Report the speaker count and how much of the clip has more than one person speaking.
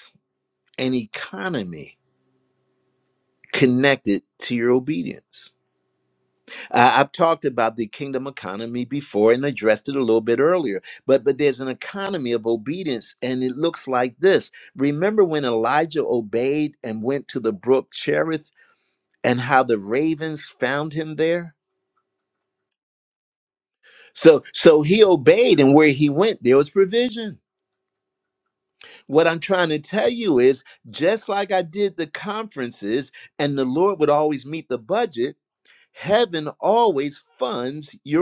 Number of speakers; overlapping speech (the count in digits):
1, no overlap